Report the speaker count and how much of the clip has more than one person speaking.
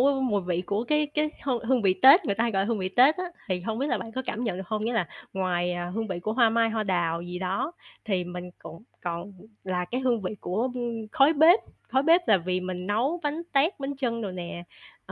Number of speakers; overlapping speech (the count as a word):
one, no overlap